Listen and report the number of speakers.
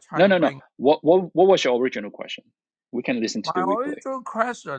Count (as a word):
two